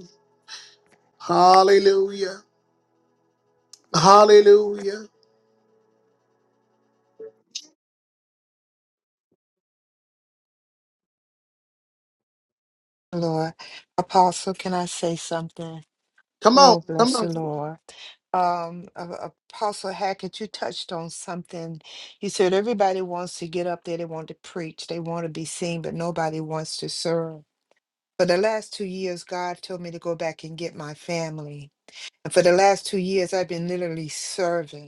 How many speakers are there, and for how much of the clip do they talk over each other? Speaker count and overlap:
two, about 2%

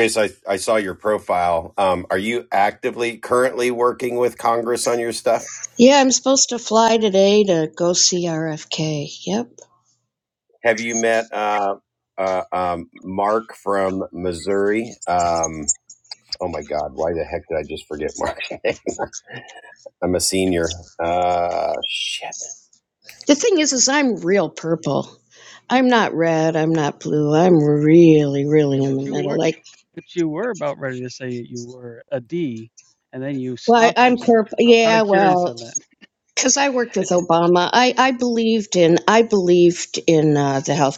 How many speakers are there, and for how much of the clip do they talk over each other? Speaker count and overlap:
three, about 7%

